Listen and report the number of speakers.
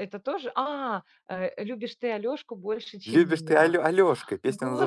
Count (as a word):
two